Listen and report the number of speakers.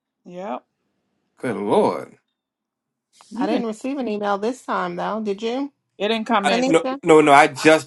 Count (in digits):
3